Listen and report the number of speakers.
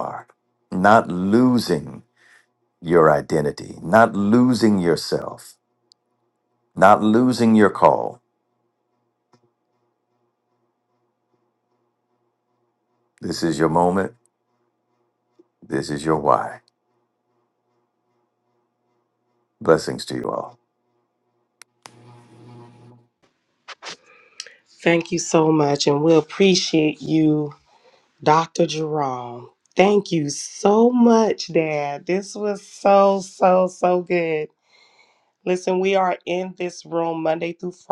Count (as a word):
two